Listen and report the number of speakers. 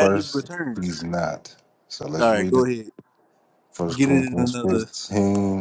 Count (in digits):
2